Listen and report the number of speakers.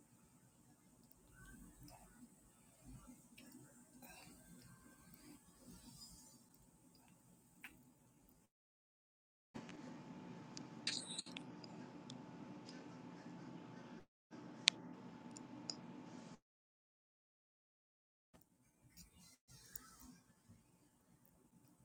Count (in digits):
0